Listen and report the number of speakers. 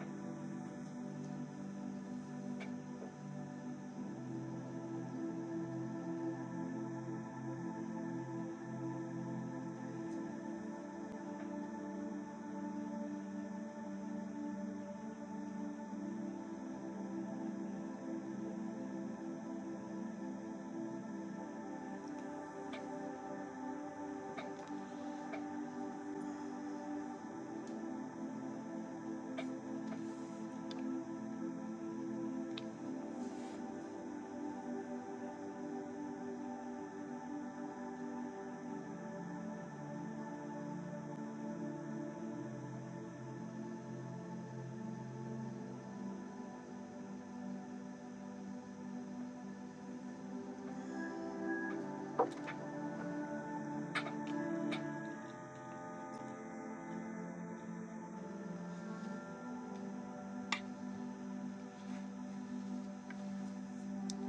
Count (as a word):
zero